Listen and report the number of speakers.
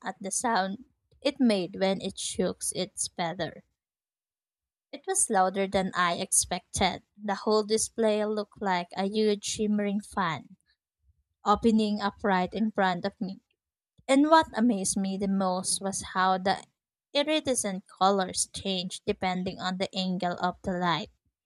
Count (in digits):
1